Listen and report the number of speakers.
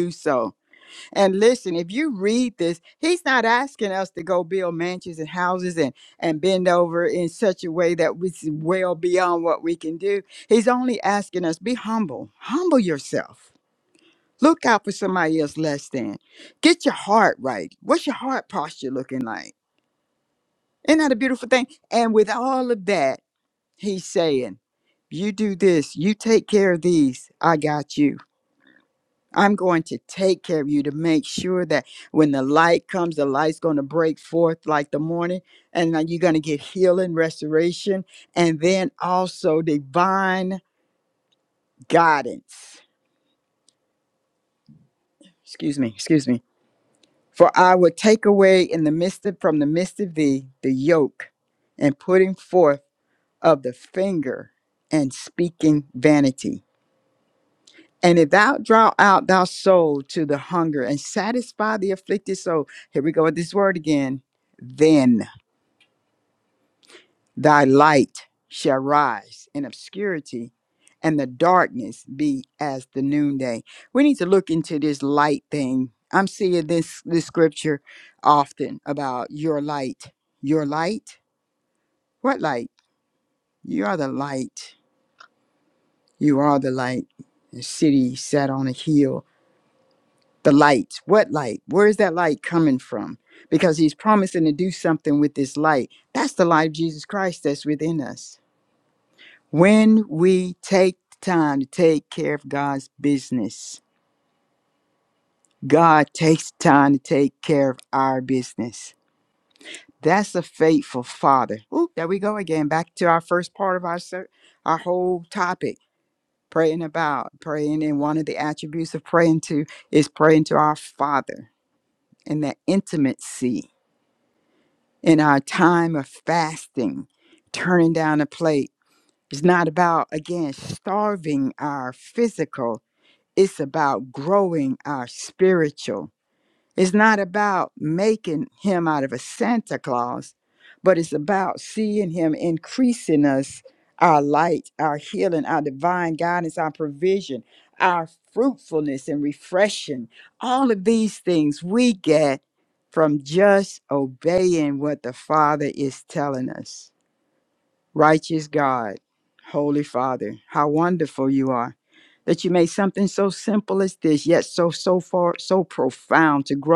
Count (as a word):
one